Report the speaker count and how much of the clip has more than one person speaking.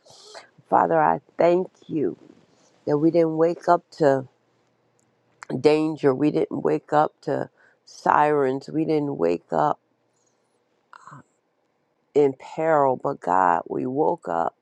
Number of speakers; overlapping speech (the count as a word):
one, no overlap